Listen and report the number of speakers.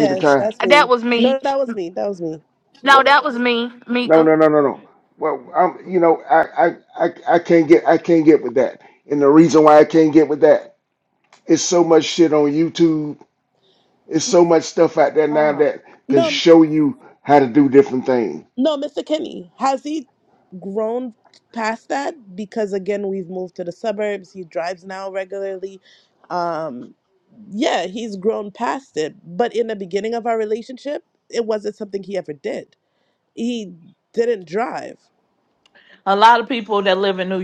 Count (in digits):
4